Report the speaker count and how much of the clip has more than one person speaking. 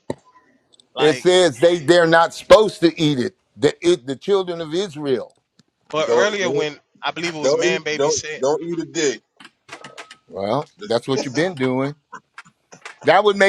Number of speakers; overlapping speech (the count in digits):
3, about 14%